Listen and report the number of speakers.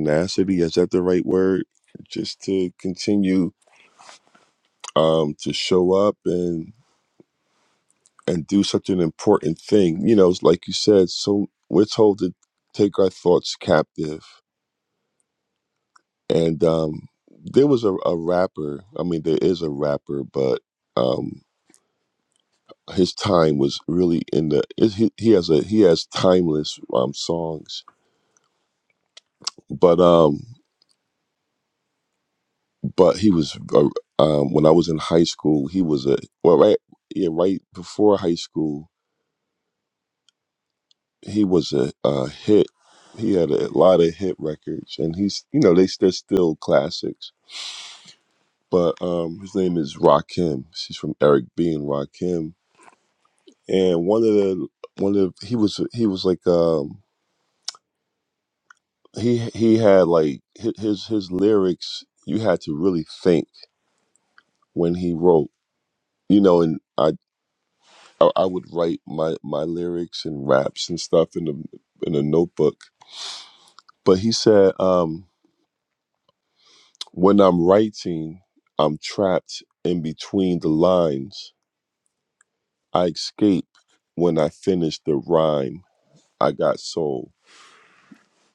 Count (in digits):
1